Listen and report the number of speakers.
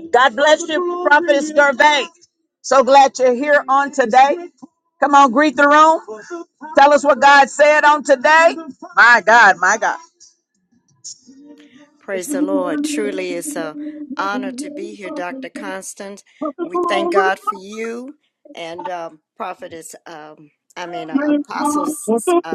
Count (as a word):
two